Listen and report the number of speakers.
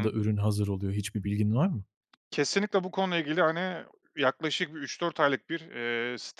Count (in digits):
2